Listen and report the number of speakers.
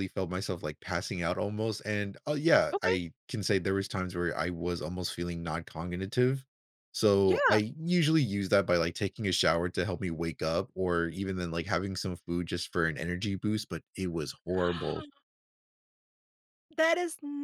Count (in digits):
2